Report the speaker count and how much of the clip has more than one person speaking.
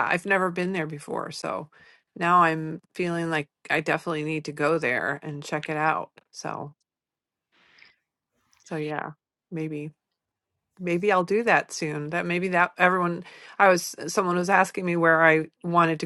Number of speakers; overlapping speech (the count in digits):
1, no overlap